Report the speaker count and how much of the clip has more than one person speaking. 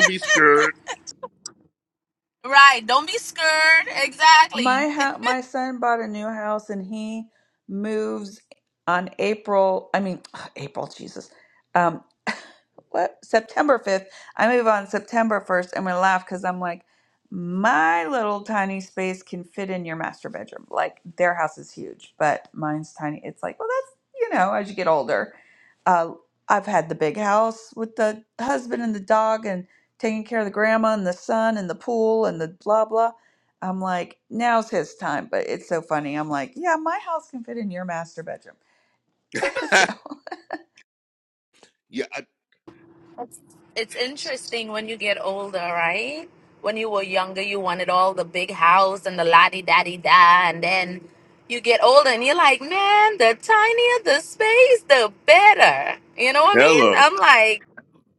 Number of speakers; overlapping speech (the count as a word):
three, about 1%